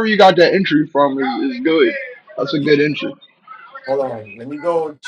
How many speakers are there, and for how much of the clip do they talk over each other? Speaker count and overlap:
2, no overlap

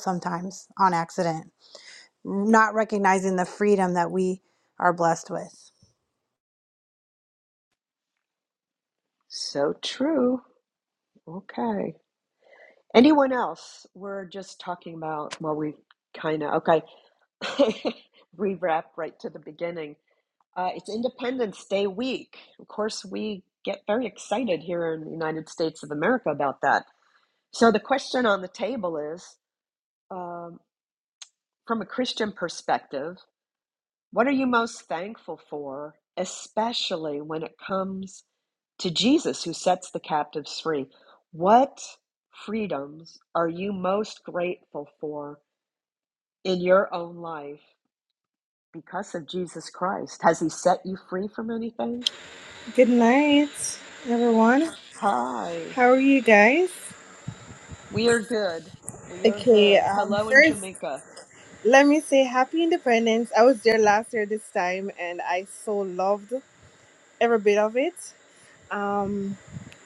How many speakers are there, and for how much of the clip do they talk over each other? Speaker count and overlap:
3, about 2%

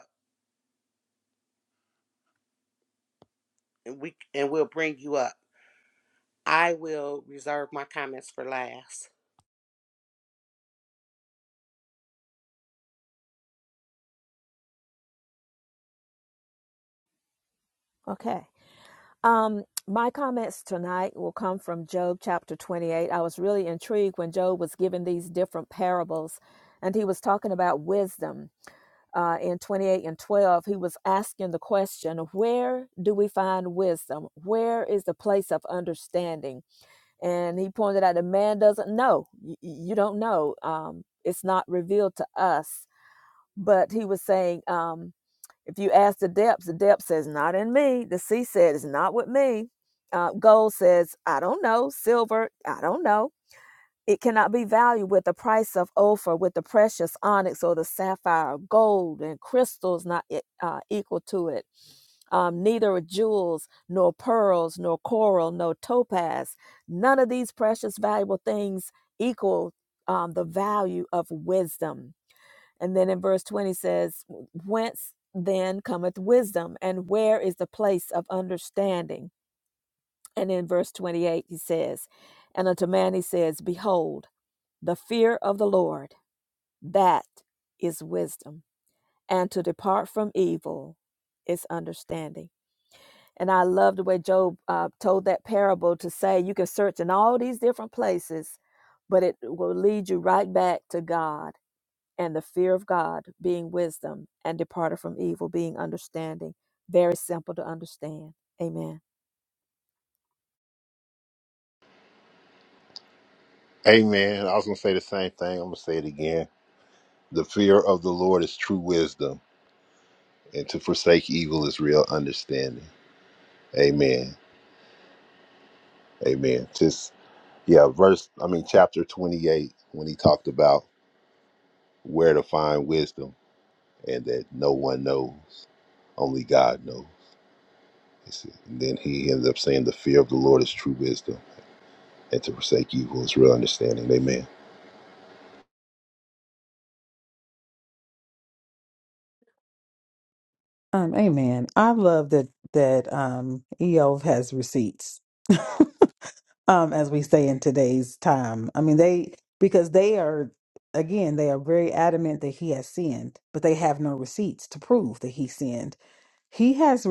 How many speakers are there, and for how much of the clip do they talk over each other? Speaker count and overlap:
4, no overlap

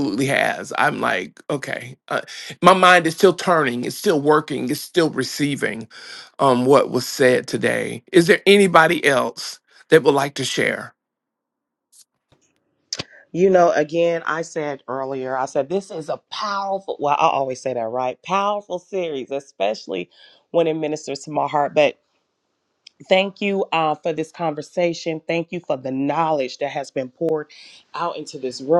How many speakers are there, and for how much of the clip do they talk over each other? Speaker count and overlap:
2, no overlap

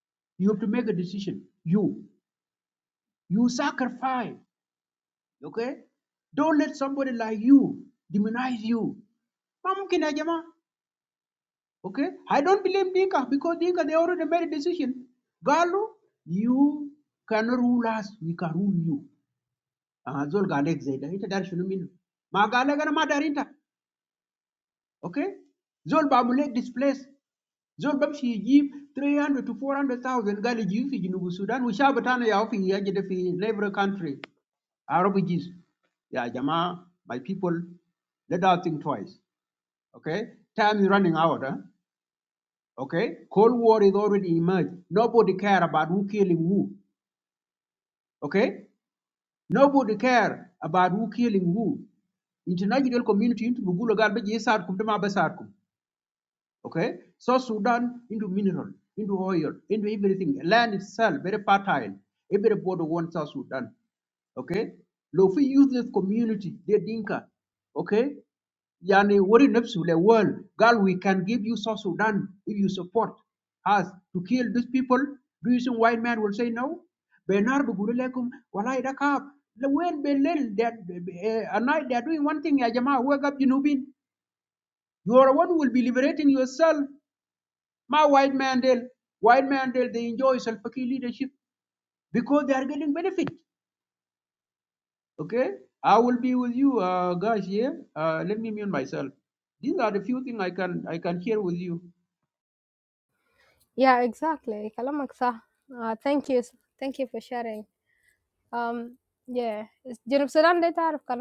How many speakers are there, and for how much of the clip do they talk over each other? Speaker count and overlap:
2, no overlap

